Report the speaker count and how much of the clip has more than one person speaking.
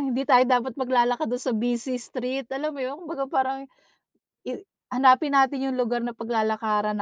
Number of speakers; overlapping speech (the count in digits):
1, no overlap